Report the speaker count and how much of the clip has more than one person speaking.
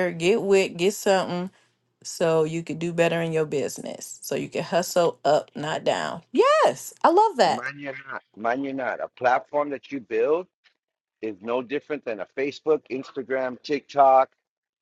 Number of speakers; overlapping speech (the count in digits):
2, about 1%